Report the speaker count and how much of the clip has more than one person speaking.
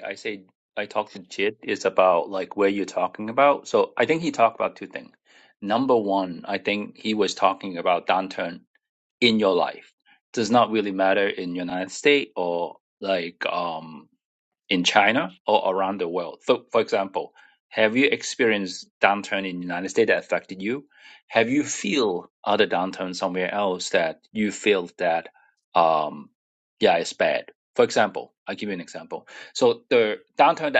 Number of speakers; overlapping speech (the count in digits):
1, no overlap